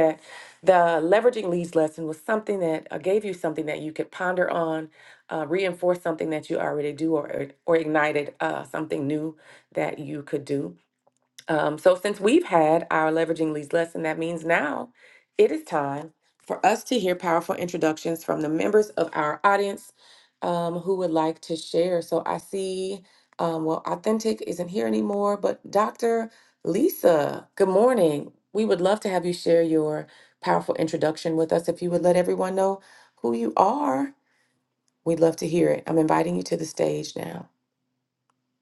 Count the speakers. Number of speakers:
1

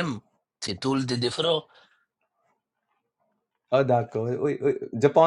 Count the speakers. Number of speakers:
2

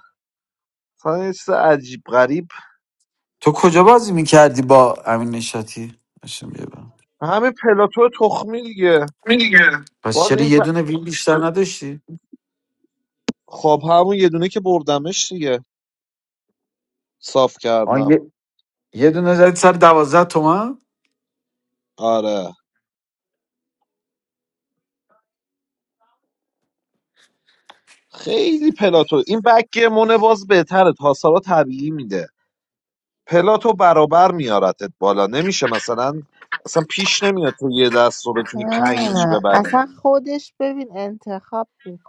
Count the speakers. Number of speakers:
3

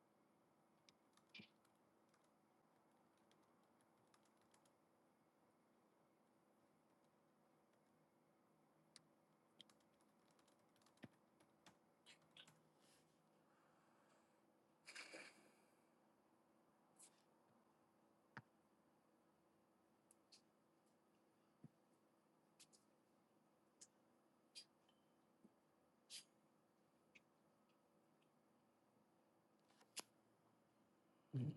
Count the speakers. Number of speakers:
0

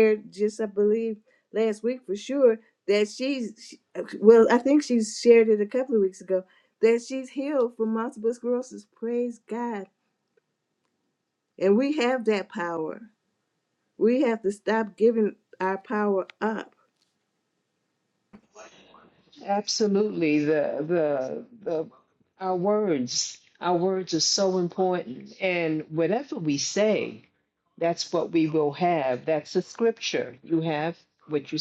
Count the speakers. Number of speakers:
2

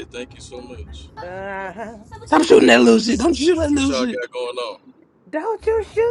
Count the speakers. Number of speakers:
3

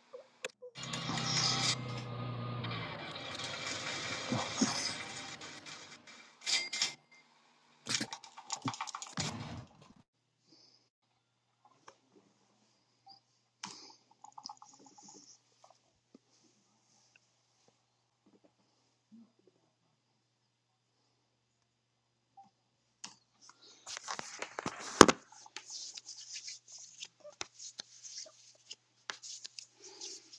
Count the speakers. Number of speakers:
0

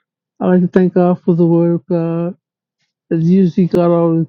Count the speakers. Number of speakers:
1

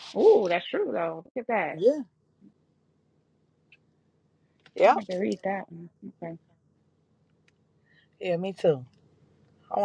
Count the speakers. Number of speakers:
2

